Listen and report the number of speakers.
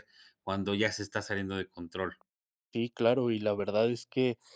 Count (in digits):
2